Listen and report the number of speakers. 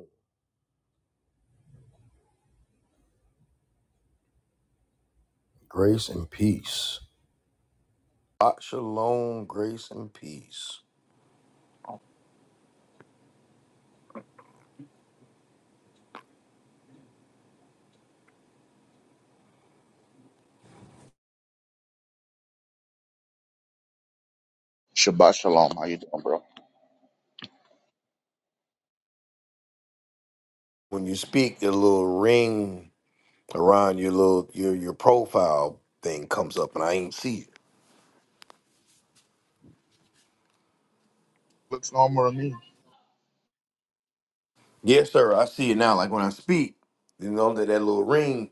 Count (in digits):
2